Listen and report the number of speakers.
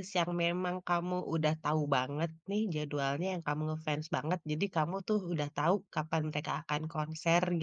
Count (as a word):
one